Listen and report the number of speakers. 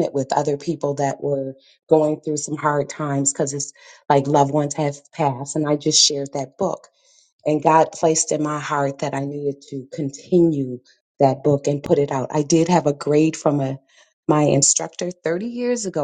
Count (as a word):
one